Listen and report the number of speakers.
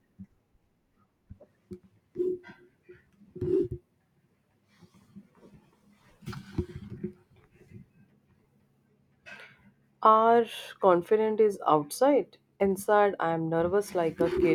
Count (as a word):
one